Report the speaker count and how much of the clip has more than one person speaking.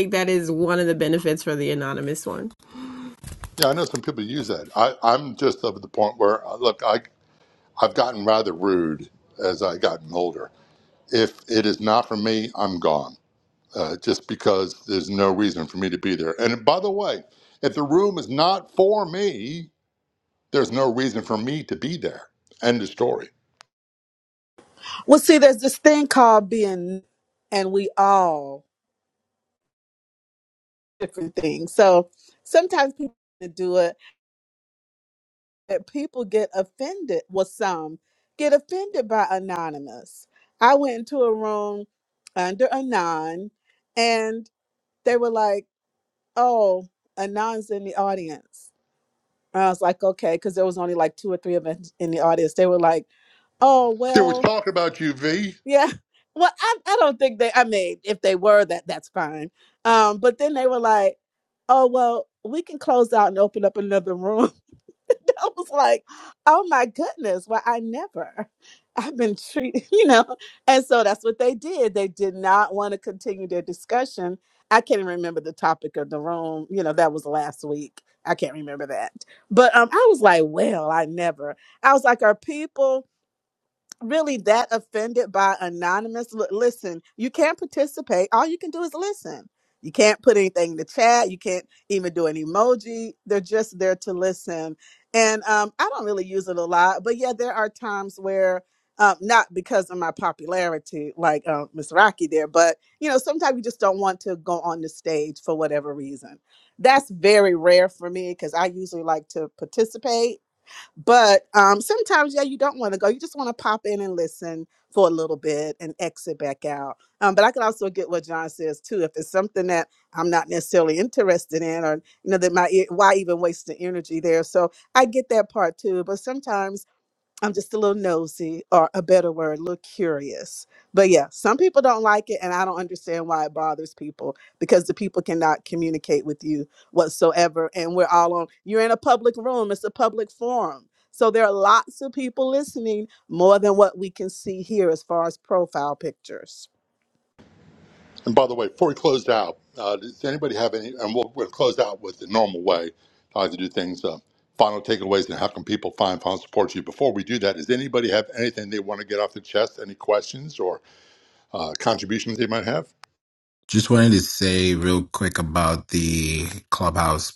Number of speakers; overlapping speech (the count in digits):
4, under 1%